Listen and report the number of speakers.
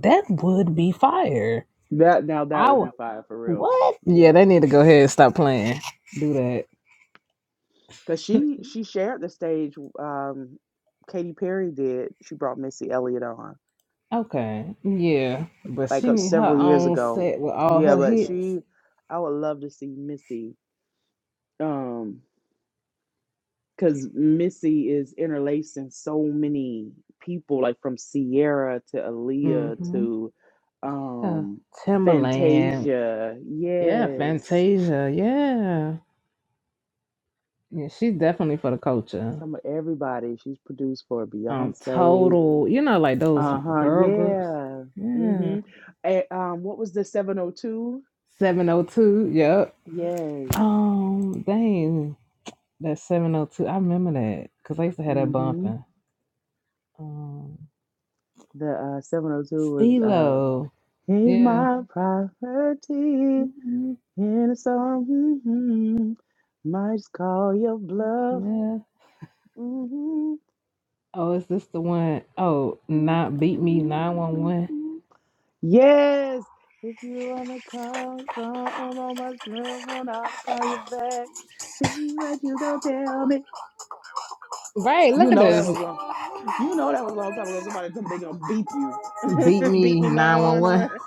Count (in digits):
2